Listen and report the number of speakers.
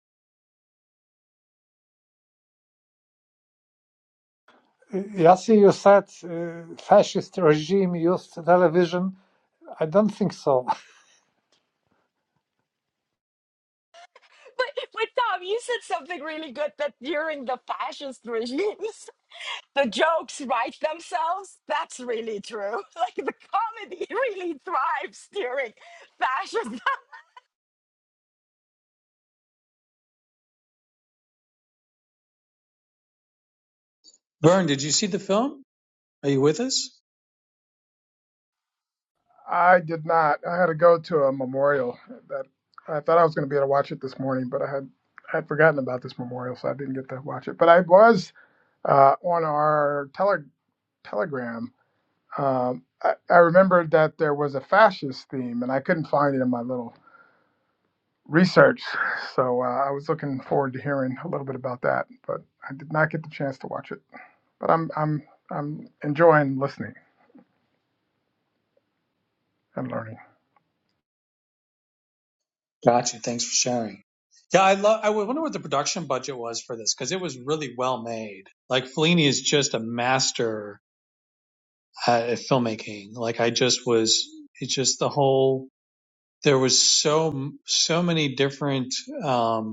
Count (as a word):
four